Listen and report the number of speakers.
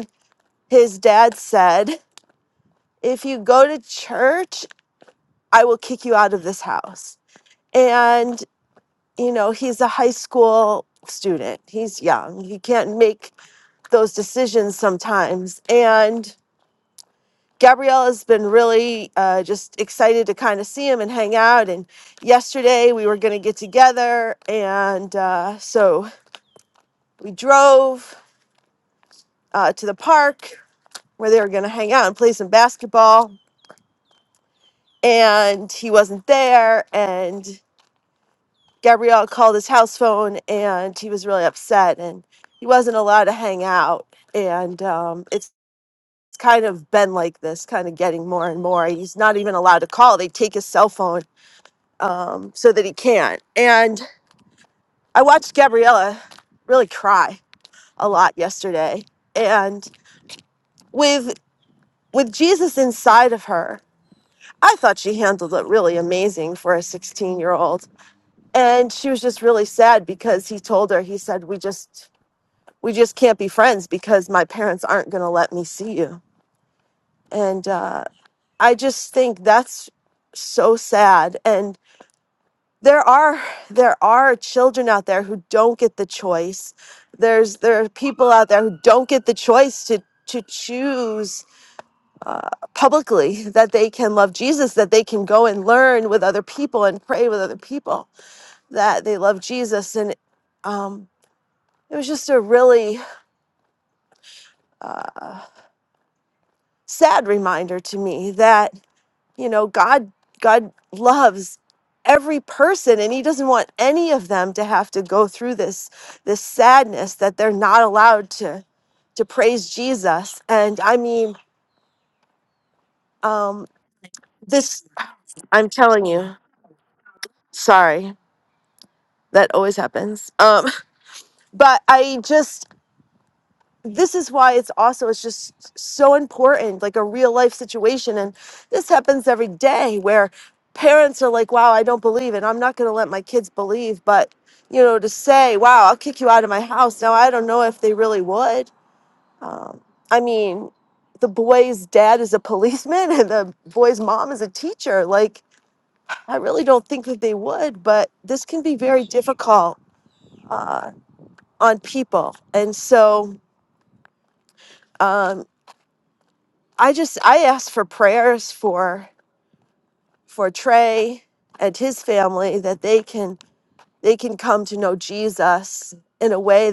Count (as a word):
one